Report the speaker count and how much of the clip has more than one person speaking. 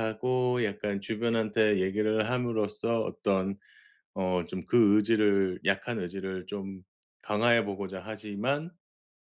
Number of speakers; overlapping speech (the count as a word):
one, no overlap